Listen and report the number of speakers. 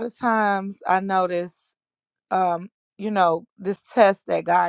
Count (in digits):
1